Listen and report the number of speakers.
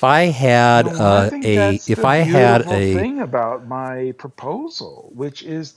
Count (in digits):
2